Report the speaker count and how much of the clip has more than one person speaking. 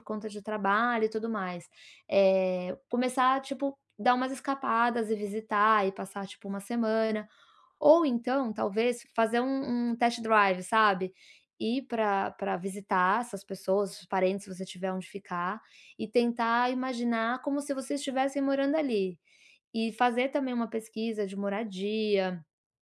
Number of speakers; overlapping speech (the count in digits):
1, no overlap